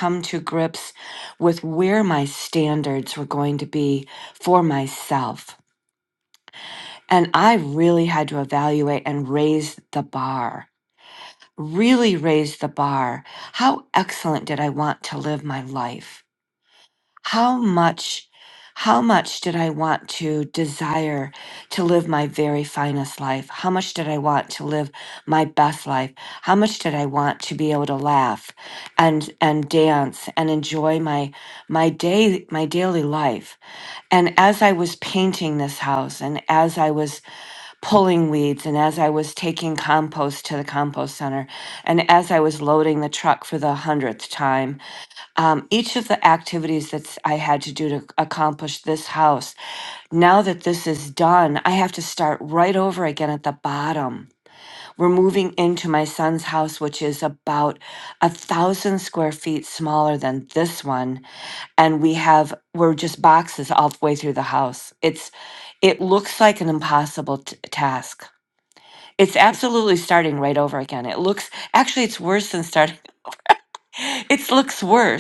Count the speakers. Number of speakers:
1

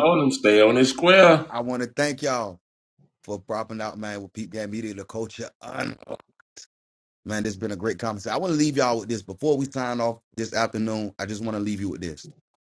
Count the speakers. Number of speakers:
2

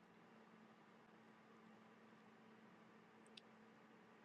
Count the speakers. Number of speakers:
0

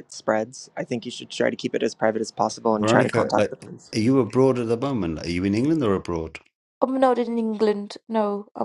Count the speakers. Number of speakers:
3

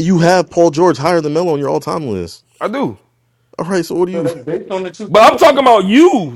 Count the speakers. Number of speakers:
3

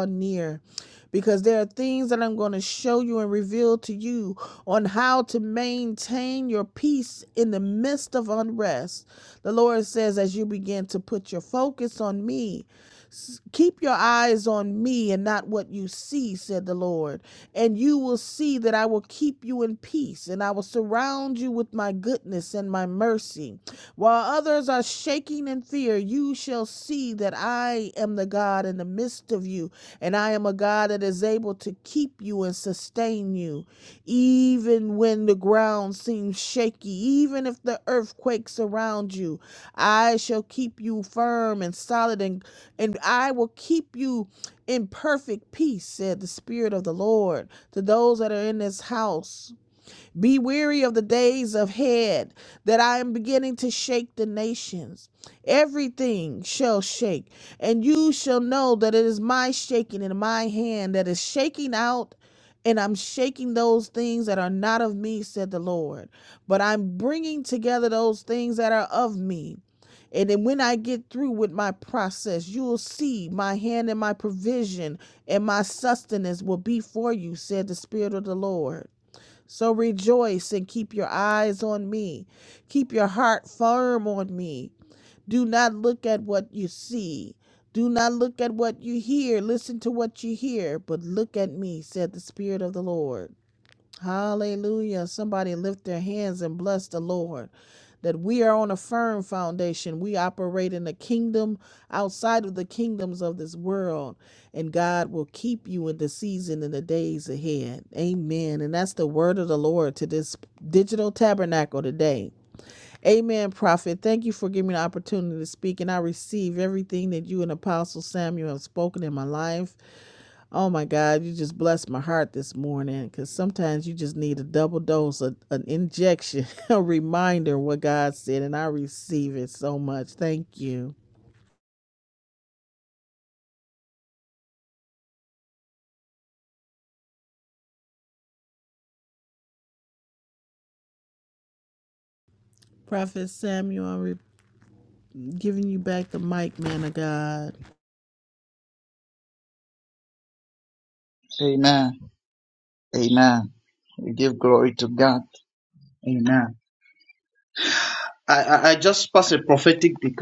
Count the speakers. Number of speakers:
2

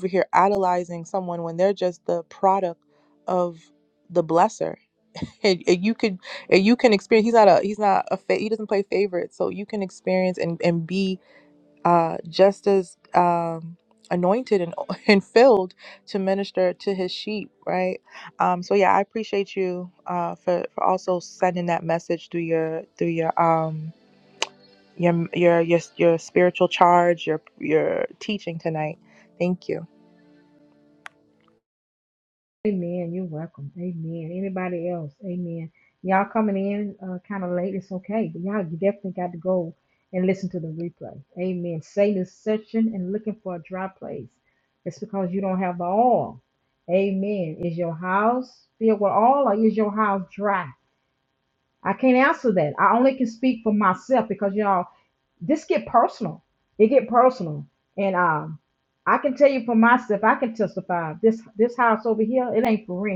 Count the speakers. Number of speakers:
2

